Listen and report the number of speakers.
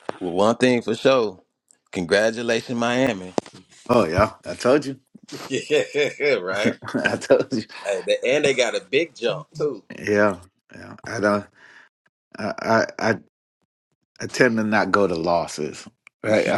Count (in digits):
2